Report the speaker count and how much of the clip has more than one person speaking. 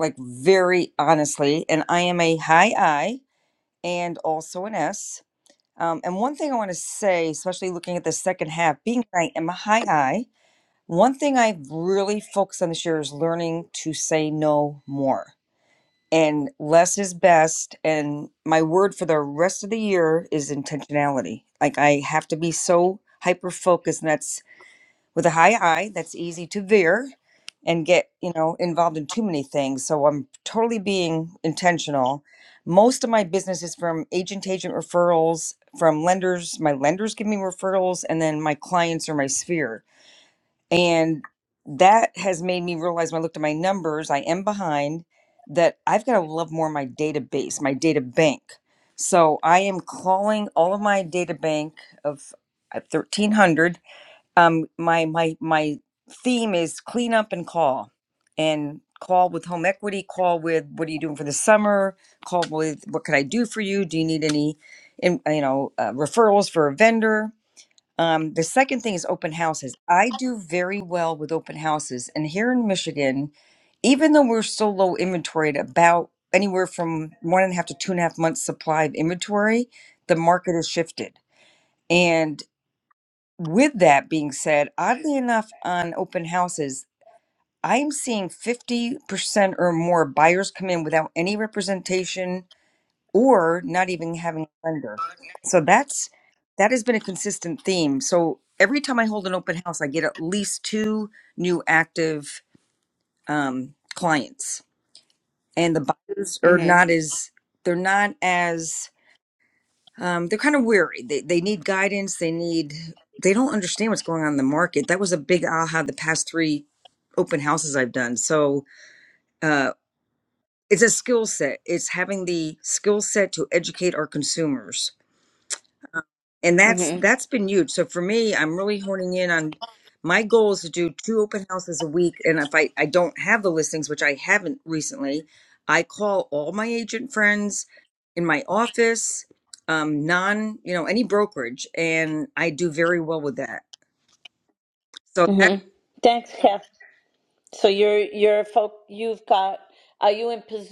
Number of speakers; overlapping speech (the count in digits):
2, about 1%